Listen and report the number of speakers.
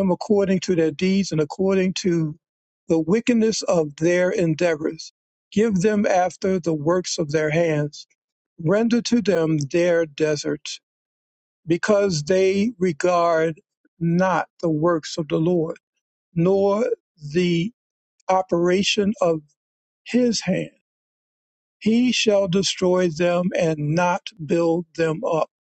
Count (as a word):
one